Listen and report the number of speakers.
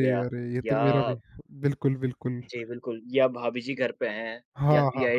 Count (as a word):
two